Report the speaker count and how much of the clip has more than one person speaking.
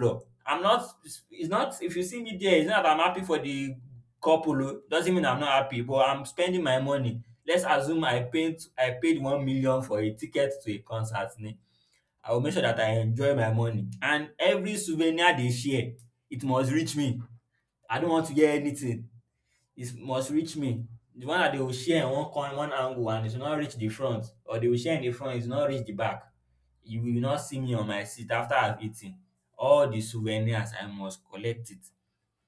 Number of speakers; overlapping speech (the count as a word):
one, no overlap